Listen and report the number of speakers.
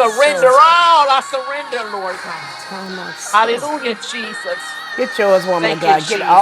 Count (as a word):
two